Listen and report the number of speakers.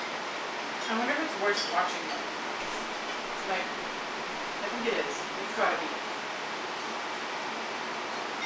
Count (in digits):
1